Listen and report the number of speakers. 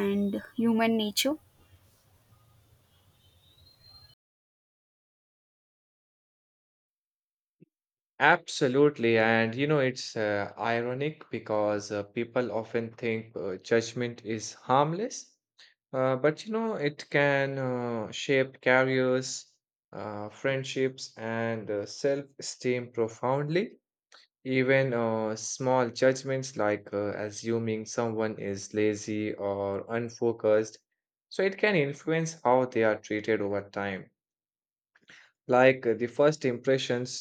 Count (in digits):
2